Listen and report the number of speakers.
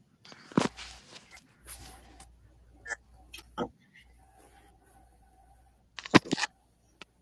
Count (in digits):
0